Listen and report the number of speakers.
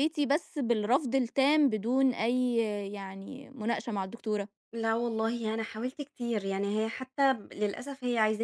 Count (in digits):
2